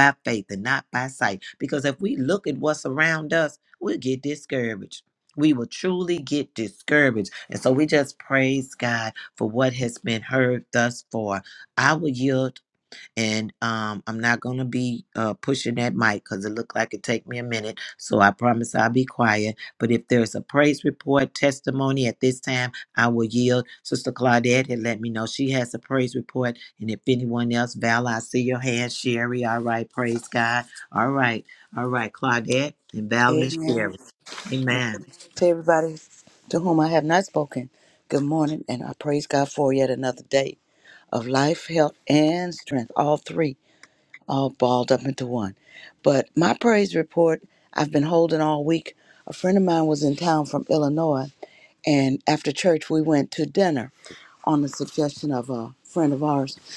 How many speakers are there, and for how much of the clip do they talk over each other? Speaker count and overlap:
2, about 1%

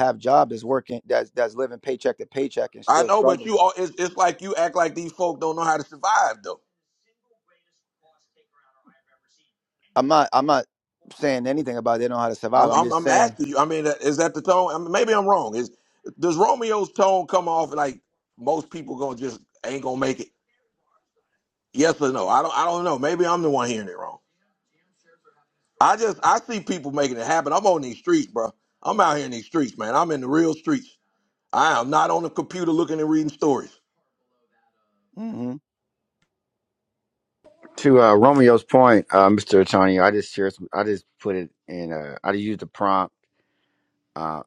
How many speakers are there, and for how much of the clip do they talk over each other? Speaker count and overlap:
3, about 3%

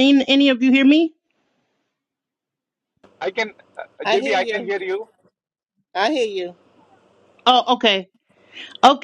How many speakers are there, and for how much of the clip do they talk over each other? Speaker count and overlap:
3, about 7%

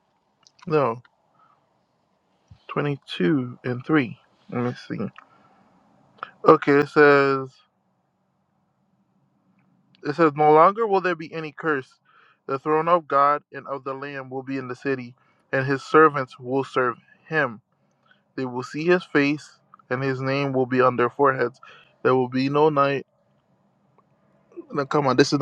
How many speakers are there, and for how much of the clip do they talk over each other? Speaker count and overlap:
1, no overlap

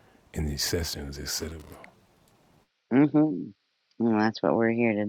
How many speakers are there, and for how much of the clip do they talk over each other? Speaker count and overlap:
2, no overlap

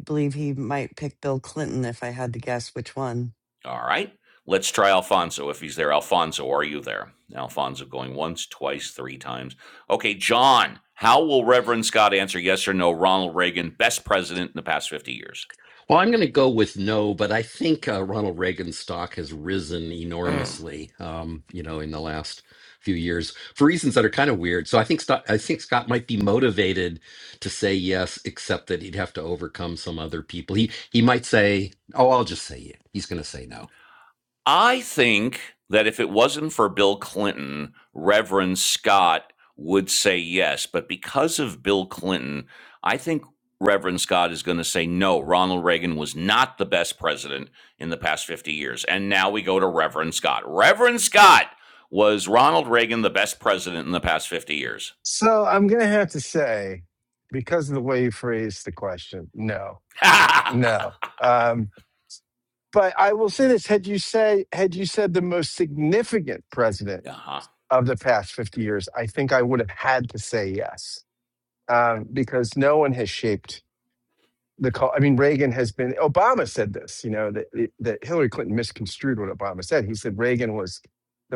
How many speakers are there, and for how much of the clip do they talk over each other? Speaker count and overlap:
4, about 1%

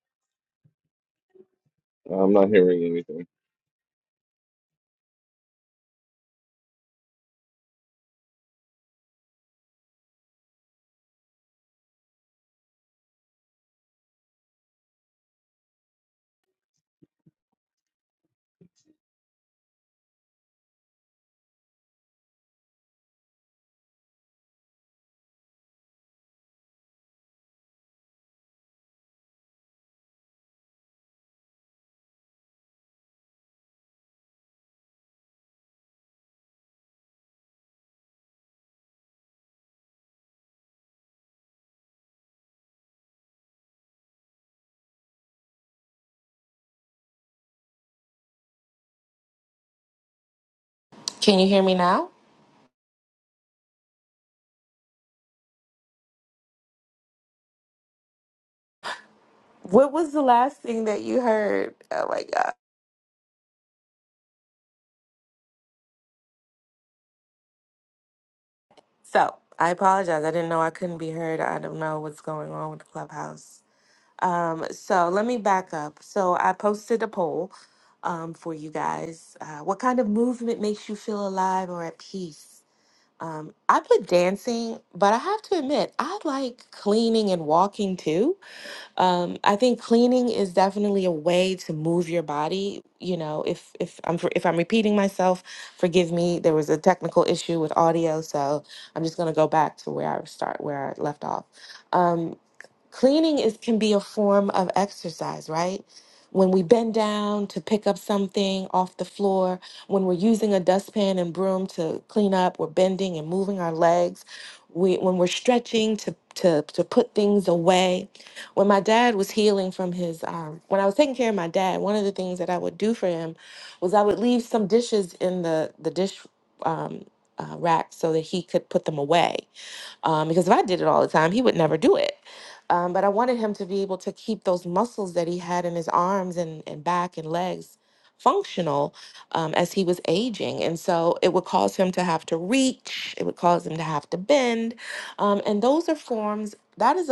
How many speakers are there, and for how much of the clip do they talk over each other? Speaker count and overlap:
2, no overlap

